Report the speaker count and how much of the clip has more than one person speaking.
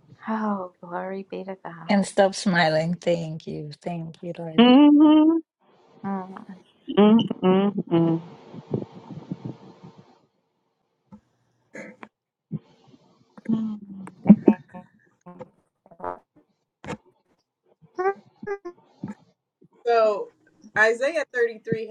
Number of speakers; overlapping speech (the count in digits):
4, about 1%